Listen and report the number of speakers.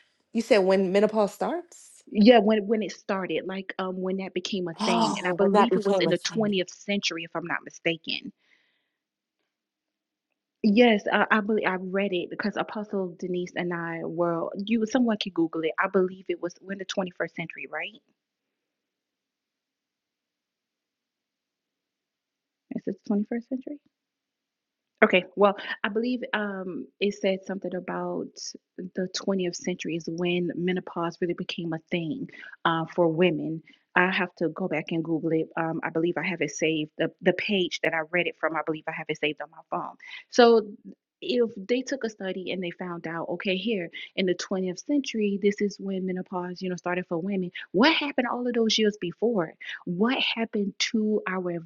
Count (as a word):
two